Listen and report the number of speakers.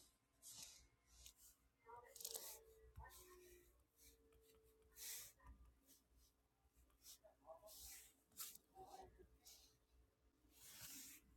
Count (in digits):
0